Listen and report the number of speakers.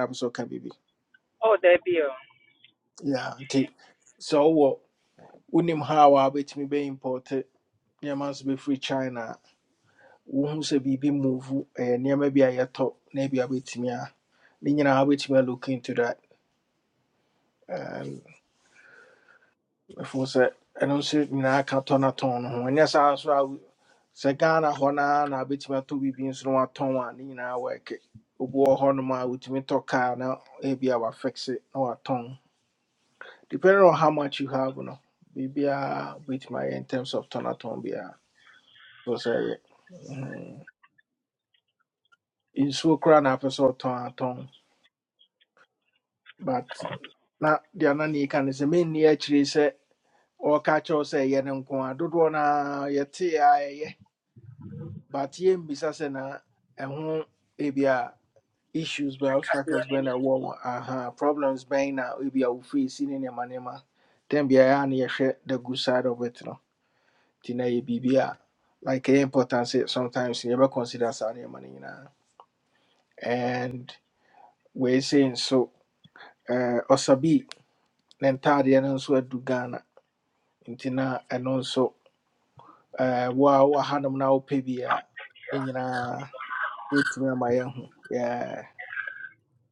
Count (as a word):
two